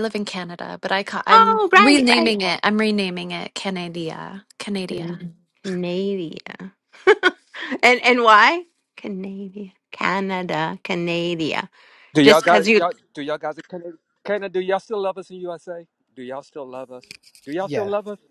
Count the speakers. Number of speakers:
three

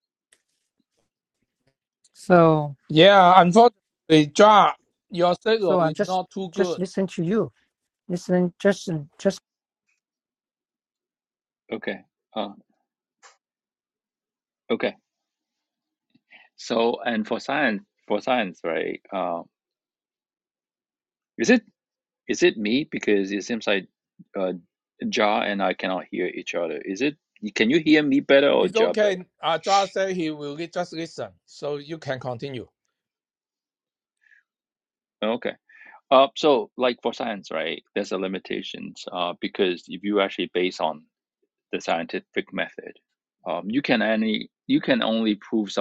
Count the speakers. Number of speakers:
three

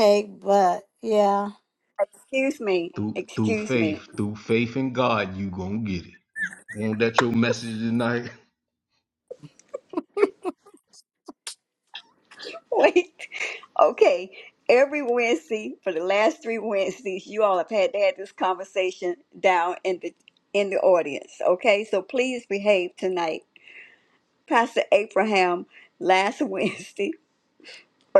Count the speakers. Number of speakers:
three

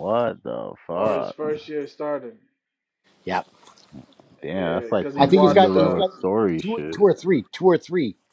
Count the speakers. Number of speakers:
three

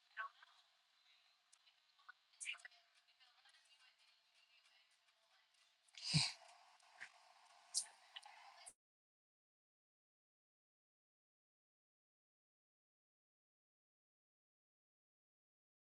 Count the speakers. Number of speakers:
zero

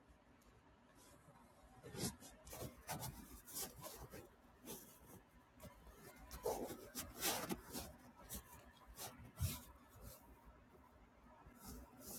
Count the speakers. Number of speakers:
zero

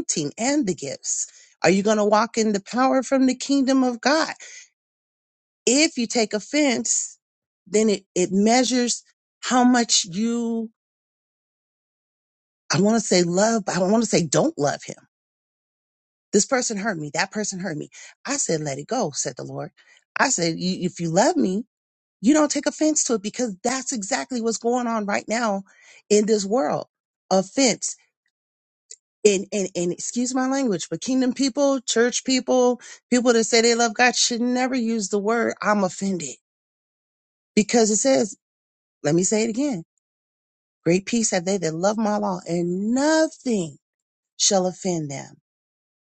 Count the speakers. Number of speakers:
one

